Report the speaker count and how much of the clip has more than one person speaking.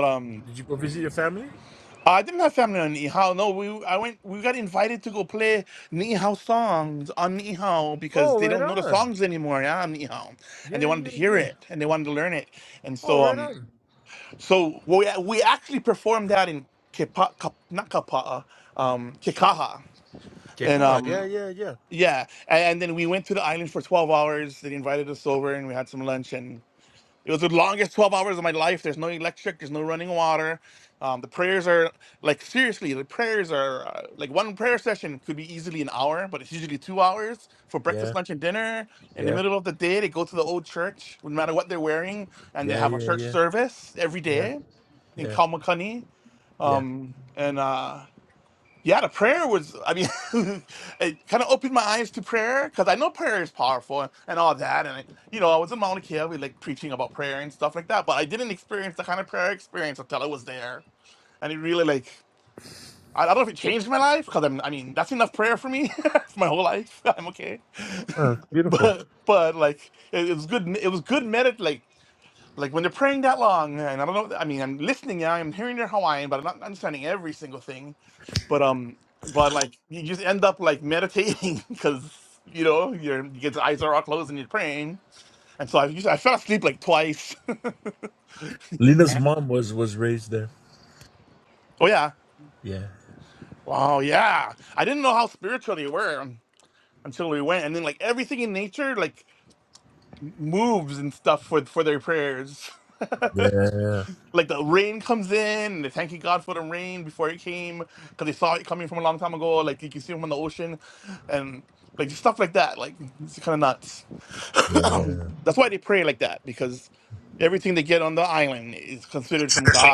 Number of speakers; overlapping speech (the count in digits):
2, about 4%